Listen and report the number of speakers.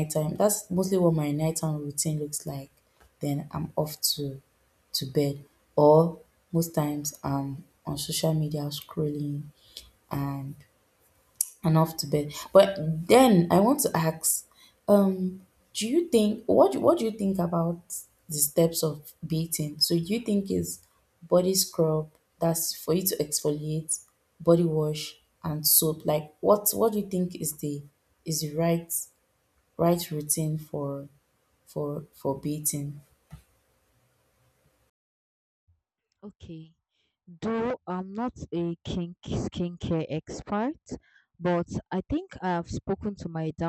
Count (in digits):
2